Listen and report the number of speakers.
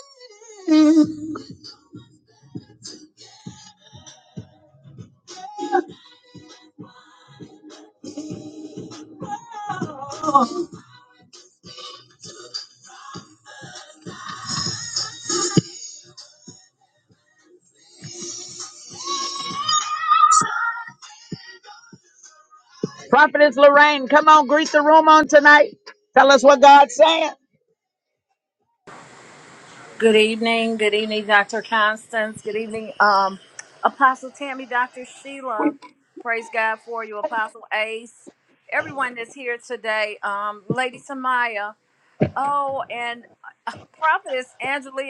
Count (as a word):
two